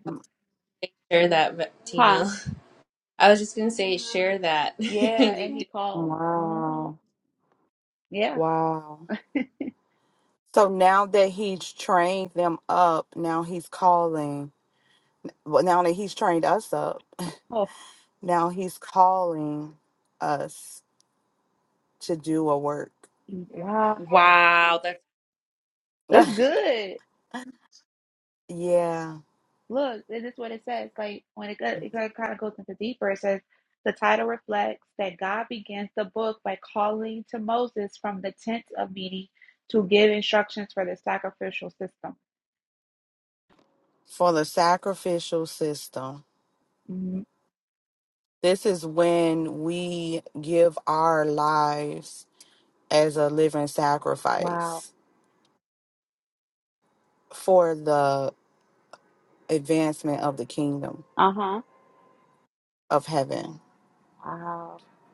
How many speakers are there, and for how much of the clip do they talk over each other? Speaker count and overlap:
3, about 4%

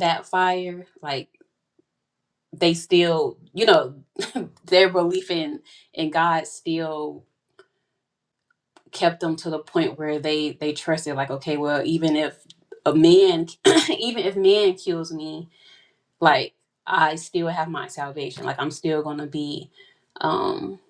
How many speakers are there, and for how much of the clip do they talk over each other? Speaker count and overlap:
1, no overlap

